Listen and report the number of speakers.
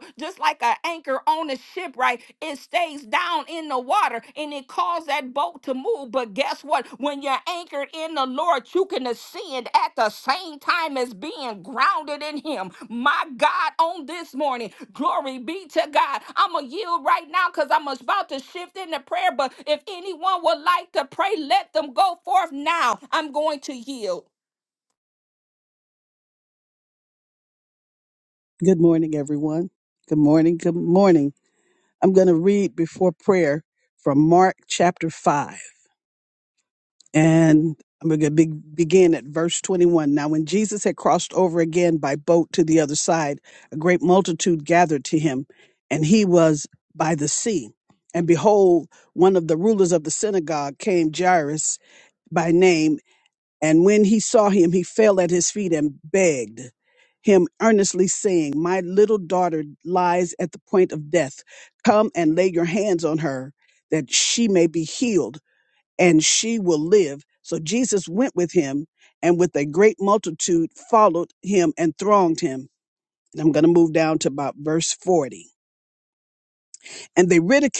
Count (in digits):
2